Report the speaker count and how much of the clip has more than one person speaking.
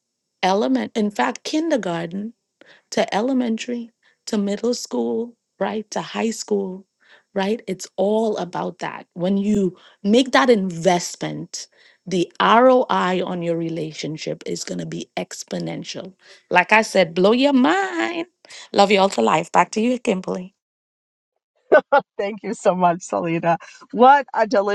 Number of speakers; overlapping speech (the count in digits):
2, no overlap